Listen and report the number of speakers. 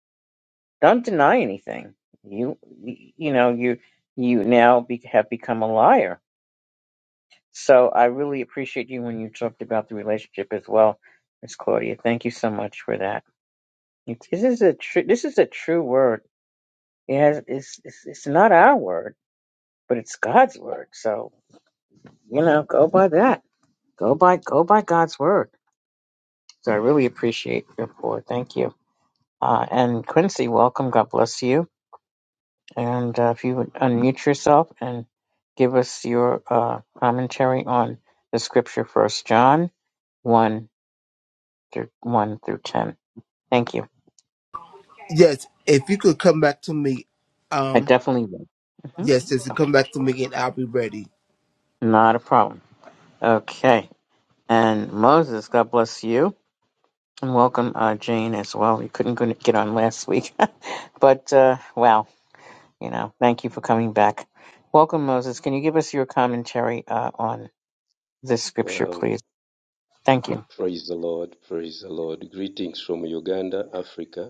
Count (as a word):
three